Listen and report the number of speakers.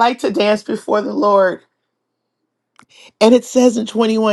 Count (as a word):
one